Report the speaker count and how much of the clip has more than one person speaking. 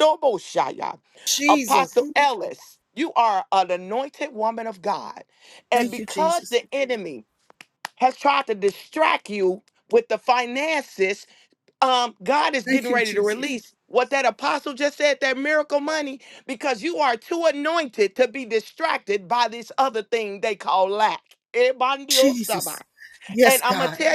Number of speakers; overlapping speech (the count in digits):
2, about 10%